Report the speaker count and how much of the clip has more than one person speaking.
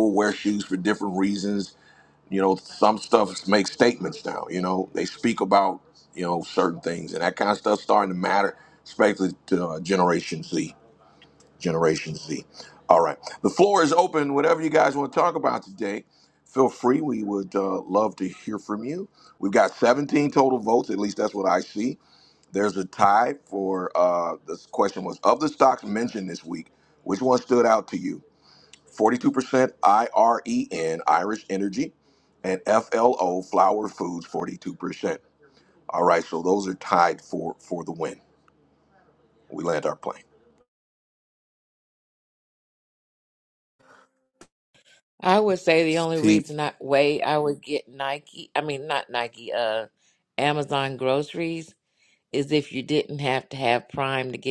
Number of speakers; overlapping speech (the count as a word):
two, no overlap